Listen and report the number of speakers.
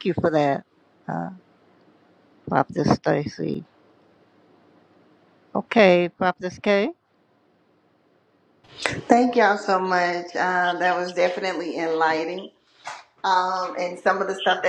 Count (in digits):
2